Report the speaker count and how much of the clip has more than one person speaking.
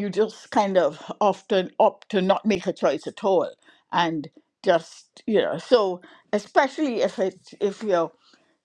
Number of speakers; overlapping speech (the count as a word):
one, no overlap